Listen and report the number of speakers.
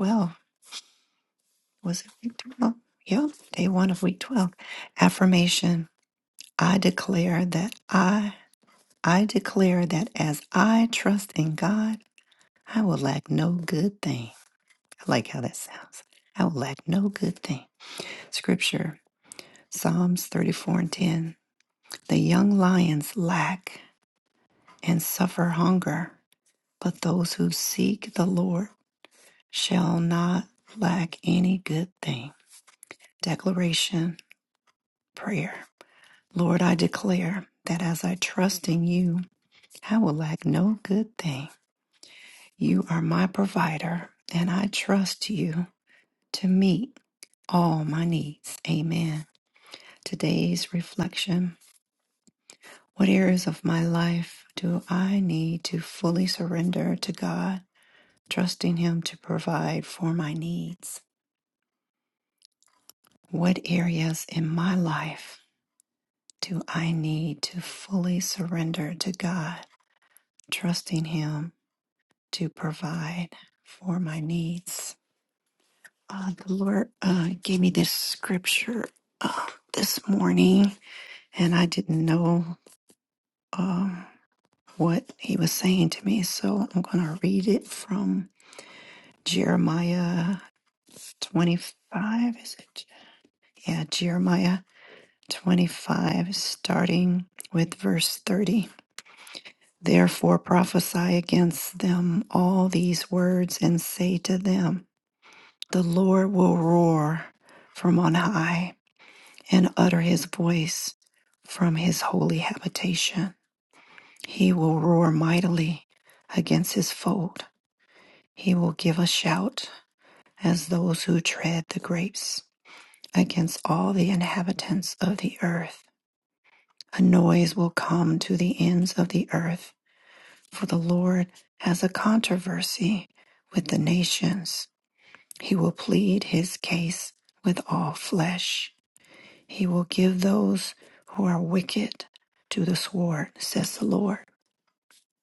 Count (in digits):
1